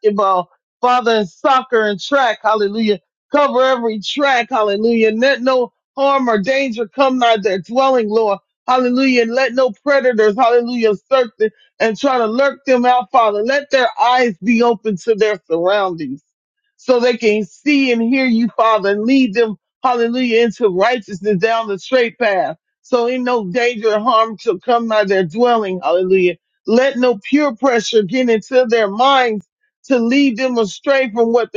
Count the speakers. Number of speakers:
one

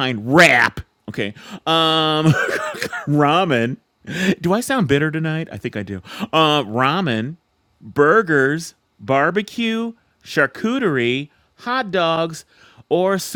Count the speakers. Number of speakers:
one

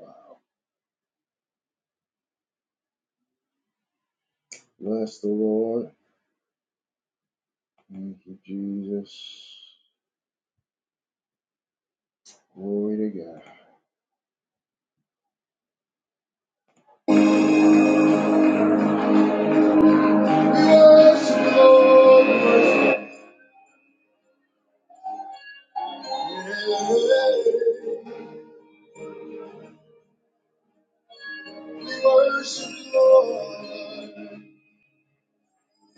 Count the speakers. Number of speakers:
one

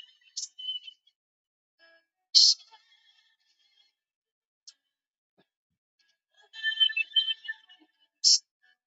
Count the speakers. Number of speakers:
zero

